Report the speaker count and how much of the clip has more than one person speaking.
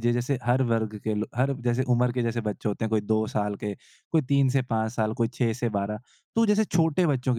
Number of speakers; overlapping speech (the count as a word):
one, no overlap